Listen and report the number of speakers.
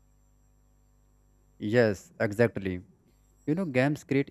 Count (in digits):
1